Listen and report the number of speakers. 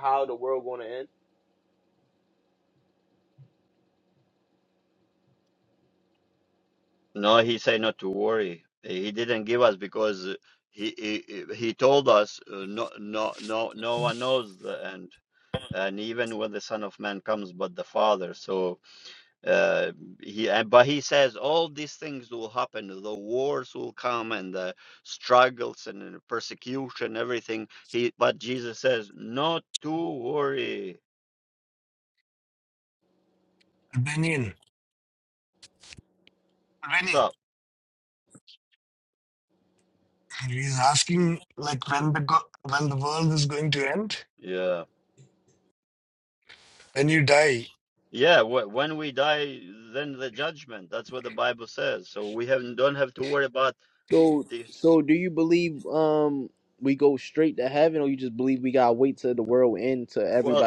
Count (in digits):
3